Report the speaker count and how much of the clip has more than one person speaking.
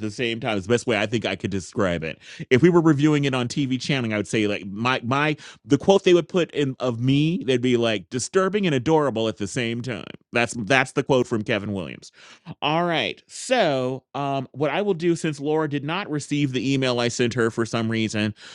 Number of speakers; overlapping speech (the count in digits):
1, no overlap